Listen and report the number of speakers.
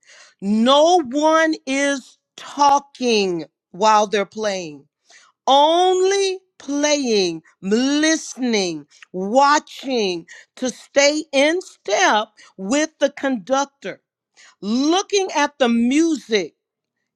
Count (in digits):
1